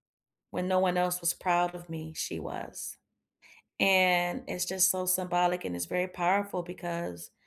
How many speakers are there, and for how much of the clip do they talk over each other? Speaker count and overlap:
1, no overlap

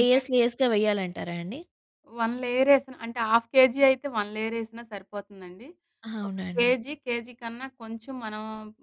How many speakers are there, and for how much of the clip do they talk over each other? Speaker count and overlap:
2, about 8%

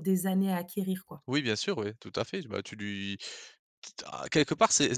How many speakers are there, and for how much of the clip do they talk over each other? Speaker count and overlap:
2, no overlap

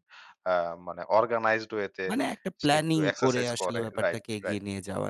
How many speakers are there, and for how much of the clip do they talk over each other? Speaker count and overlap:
2, about 39%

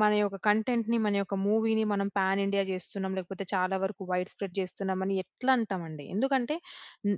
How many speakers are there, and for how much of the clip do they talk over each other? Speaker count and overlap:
1, no overlap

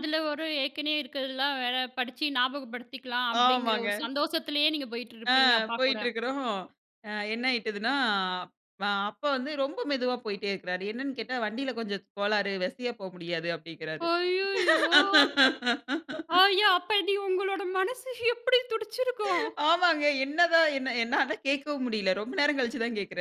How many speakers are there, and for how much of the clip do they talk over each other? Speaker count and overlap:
2, about 5%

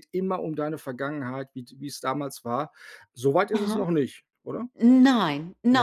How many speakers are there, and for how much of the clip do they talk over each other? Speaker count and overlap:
2, about 8%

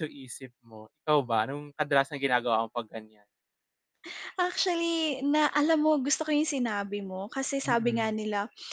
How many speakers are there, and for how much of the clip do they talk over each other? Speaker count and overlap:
2, about 4%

